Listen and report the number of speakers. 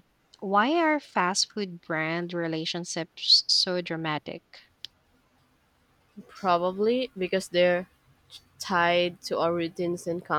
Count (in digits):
2